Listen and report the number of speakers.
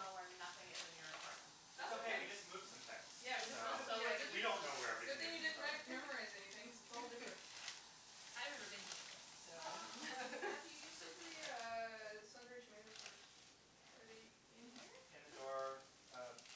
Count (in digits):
4